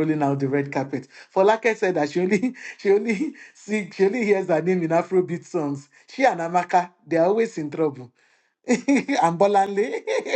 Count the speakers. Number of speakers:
1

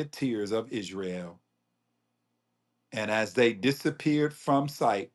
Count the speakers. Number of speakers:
1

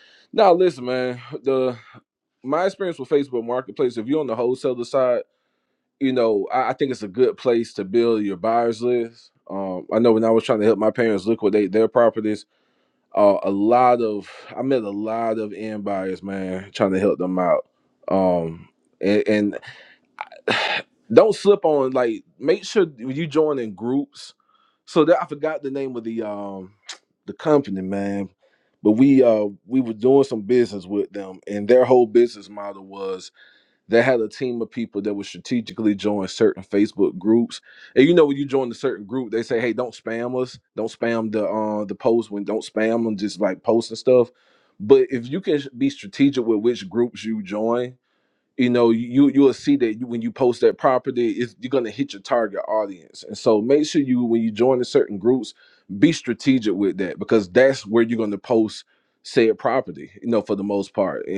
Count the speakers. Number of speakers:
1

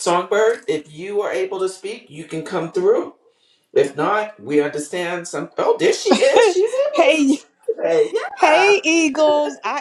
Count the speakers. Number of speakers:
2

